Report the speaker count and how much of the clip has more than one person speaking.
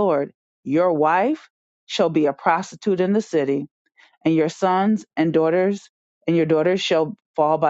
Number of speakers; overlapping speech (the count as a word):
one, no overlap